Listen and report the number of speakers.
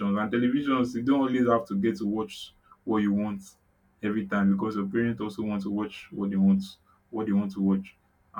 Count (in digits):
1